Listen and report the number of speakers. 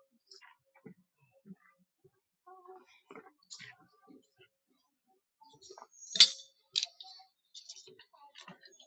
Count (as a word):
zero